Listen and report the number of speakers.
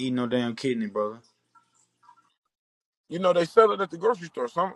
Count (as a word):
two